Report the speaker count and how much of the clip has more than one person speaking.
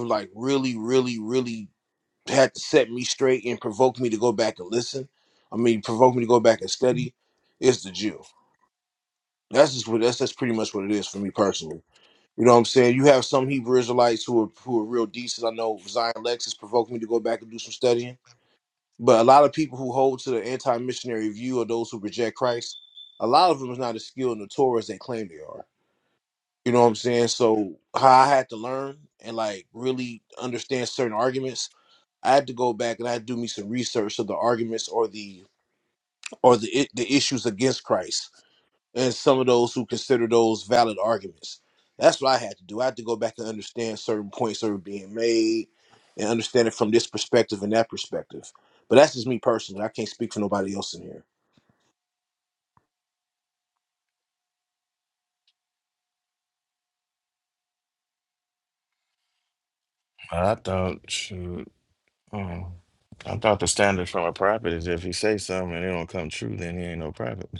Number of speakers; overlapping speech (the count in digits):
2, no overlap